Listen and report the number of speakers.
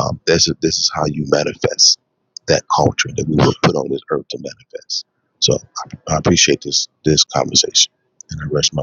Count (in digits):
1